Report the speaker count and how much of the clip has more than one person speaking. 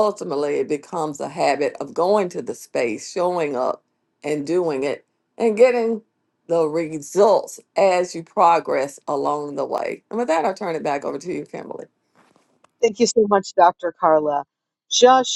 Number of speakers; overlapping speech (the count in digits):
2, no overlap